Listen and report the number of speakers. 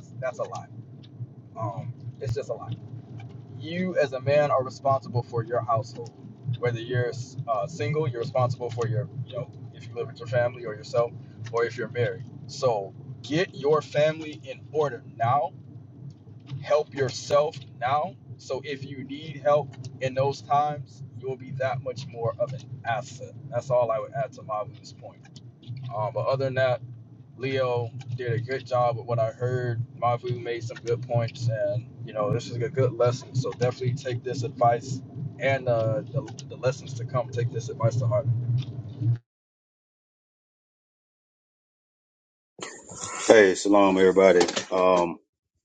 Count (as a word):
two